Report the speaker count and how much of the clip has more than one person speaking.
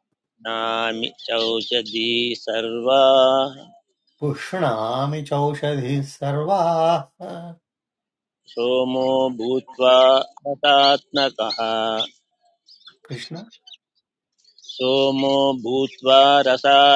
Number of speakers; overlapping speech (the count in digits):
2, no overlap